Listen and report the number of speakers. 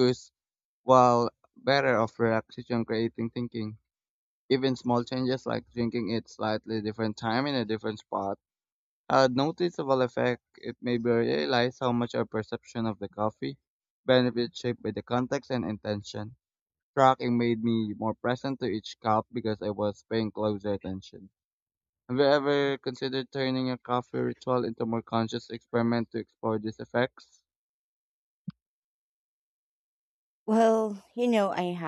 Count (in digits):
2